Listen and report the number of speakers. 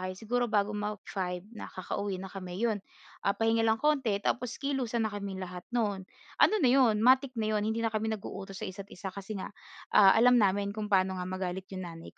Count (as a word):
one